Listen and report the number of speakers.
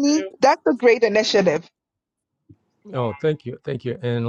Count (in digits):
2